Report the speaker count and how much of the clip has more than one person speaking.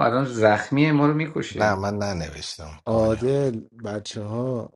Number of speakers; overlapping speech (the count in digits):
3, about 14%